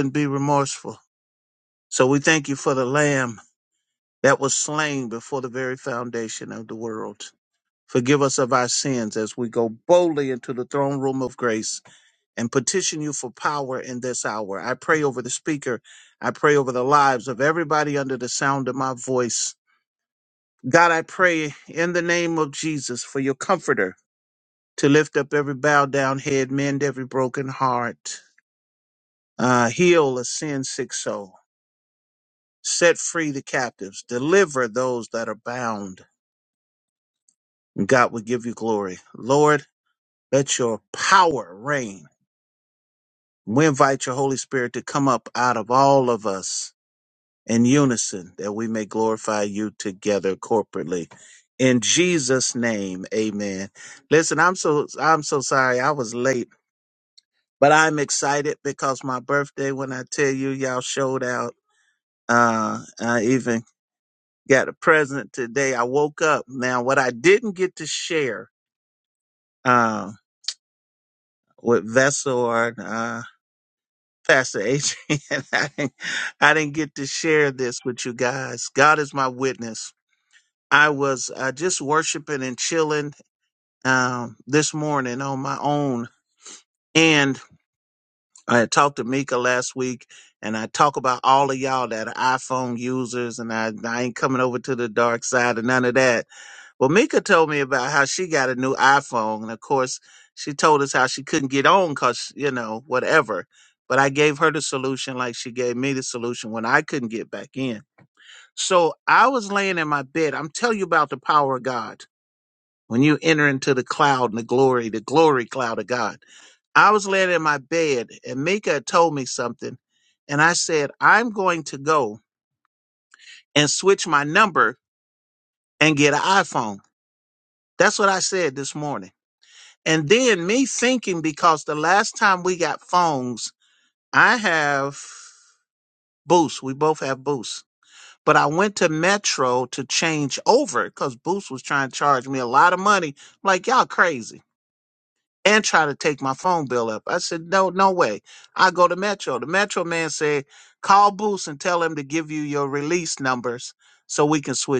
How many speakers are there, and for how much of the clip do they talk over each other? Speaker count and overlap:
one, no overlap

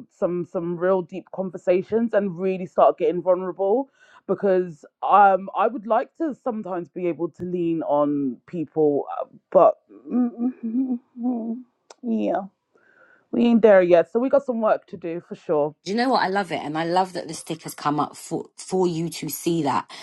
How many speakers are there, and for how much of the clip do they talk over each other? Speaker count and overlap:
two, no overlap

